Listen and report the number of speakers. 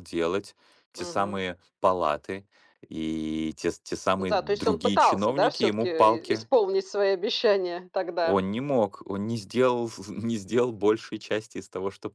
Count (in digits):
2